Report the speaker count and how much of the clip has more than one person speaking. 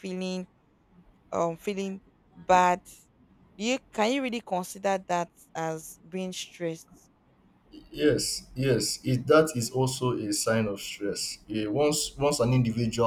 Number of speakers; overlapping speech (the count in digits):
2, no overlap